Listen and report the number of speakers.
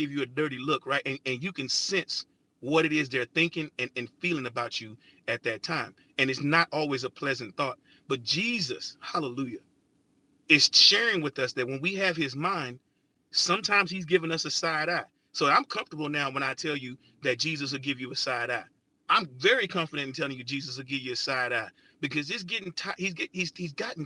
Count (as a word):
one